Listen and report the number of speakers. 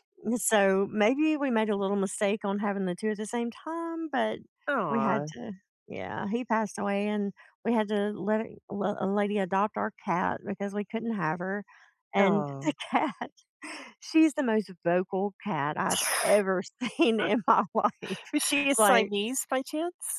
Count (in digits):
2